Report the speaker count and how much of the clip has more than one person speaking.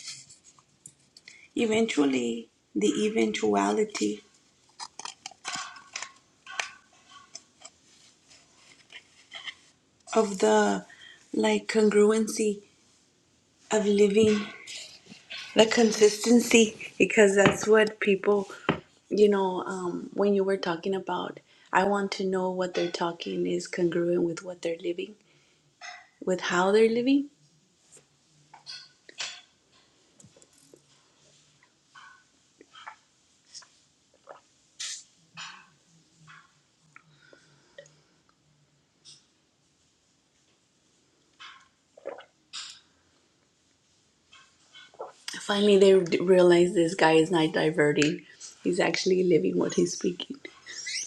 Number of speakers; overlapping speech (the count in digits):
1, no overlap